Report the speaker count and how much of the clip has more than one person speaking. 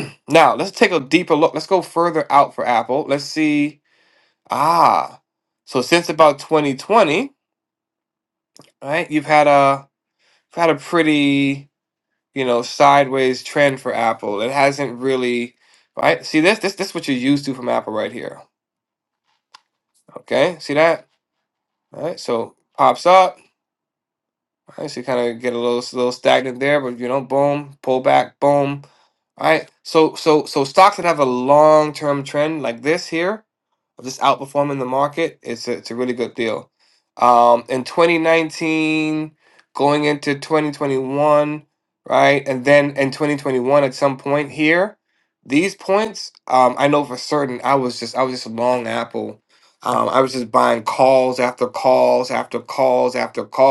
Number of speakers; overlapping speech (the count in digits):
1, no overlap